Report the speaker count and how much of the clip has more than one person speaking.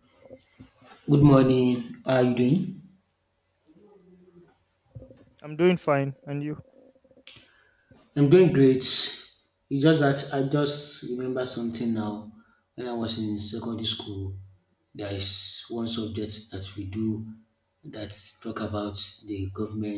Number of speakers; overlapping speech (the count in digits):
2, no overlap